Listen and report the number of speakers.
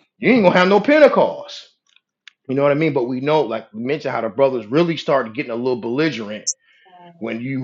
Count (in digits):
1